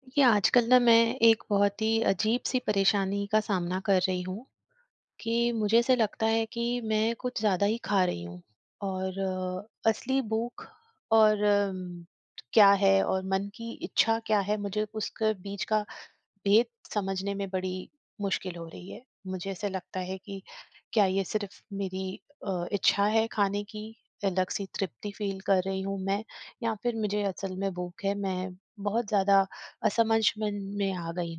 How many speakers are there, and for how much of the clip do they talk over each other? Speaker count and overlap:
1, no overlap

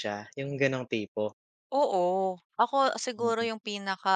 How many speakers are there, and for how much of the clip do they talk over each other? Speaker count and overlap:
2, about 7%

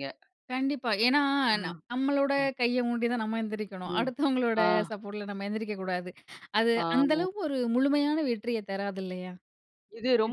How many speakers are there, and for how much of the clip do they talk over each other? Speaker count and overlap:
2, about 11%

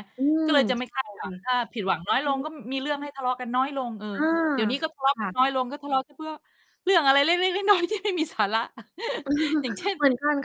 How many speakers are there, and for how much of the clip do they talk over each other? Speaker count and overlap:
2, about 7%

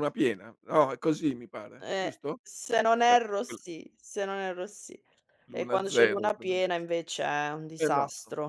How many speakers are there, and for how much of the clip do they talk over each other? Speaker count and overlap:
2, about 18%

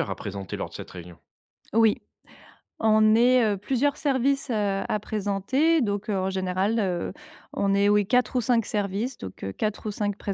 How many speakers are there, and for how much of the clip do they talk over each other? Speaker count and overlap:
2, no overlap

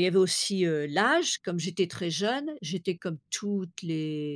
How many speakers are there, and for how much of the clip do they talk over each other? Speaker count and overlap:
1, no overlap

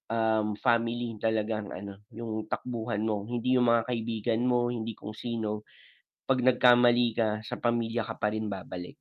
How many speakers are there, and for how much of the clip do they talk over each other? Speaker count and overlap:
1, no overlap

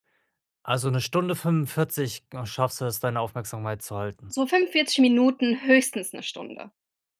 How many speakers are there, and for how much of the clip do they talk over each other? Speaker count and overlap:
2, no overlap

